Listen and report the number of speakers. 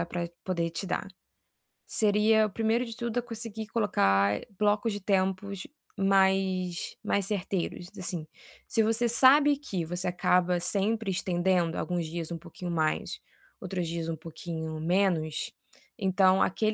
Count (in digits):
1